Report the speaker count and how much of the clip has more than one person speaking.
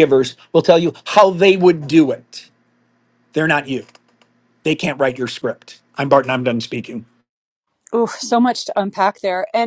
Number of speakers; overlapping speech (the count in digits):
2, no overlap